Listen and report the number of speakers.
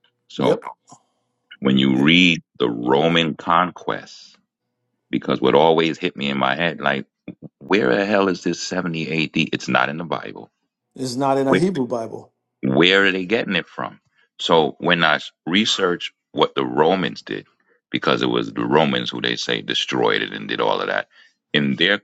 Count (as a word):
two